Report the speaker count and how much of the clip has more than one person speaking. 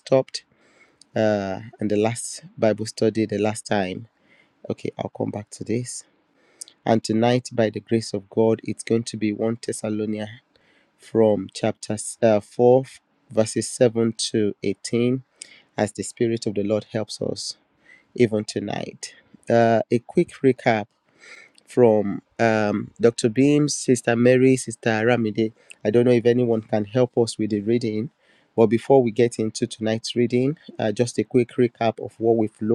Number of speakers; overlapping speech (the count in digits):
1, no overlap